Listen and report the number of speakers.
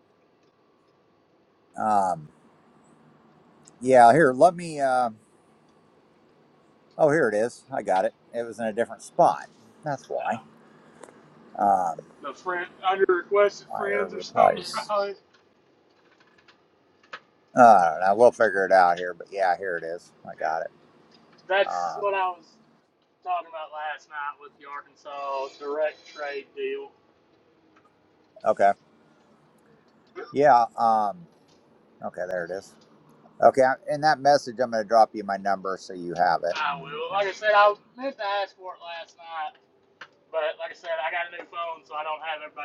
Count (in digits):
2